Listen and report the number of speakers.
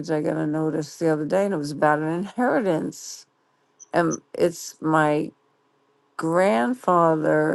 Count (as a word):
one